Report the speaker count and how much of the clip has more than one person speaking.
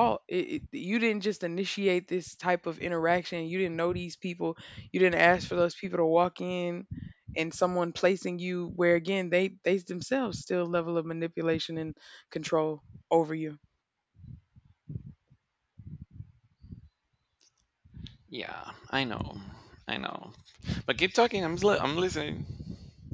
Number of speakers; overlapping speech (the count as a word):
two, no overlap